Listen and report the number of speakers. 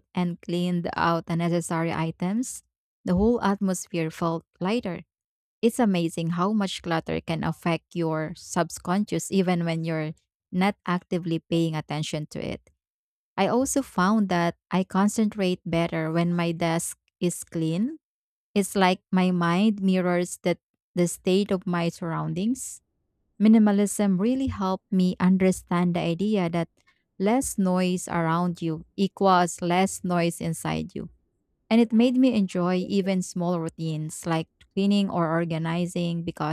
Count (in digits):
1